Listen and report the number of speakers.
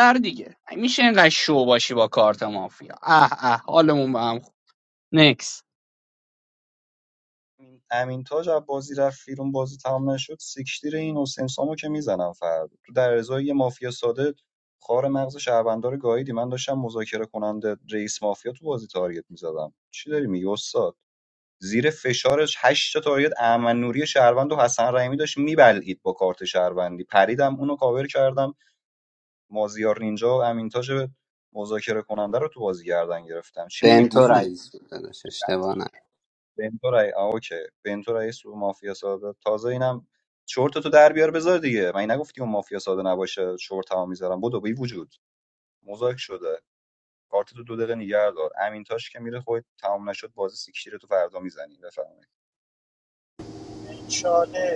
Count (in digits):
4